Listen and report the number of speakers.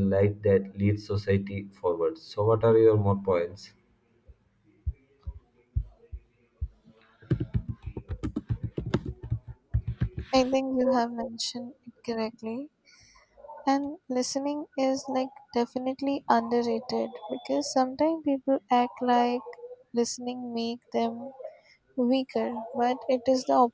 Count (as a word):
two